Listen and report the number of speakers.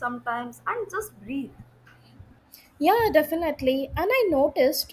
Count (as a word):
two